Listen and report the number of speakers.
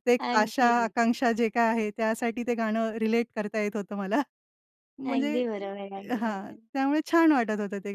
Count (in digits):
2